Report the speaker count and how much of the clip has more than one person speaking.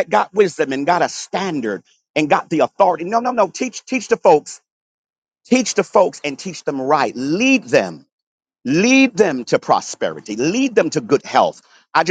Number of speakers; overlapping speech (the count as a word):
one, no overlap